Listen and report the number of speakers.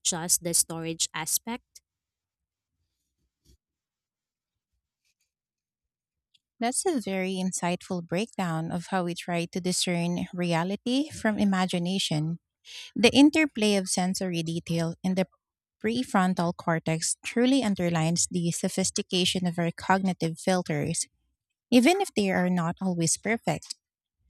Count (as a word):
two